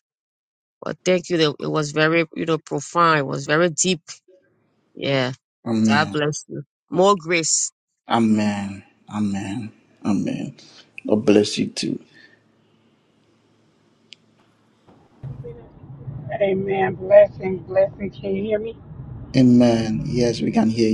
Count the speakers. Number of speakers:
3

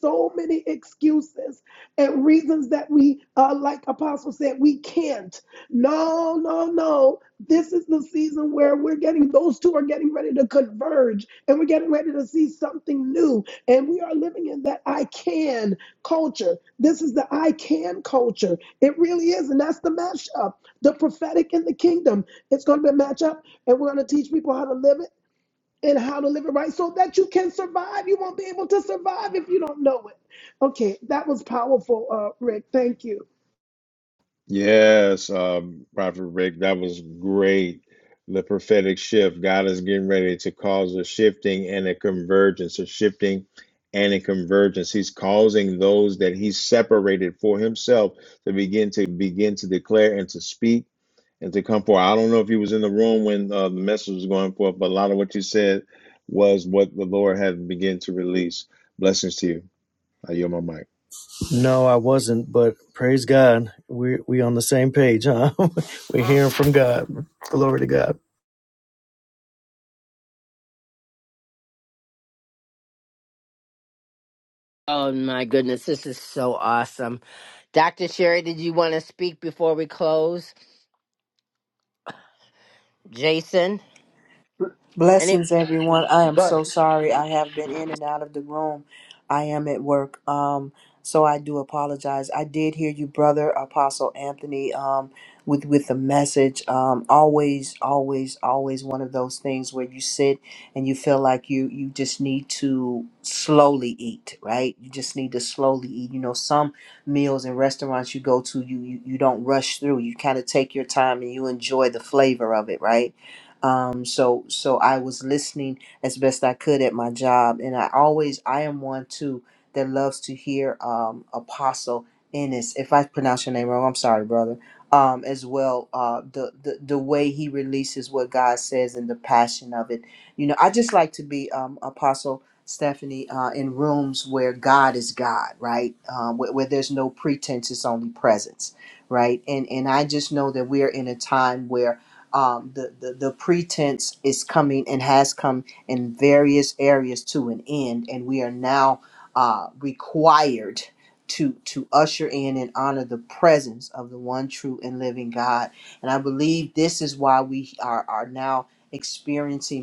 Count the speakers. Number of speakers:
5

